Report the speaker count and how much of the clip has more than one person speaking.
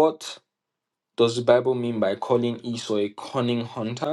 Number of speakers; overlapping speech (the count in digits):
1, no overlap